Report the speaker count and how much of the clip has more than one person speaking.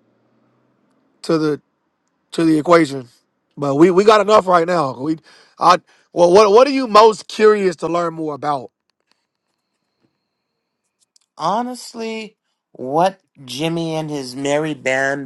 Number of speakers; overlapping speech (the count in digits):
2, no overlap